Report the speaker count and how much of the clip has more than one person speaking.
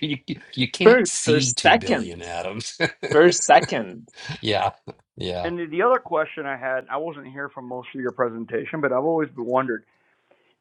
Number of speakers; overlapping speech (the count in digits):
3, about 13%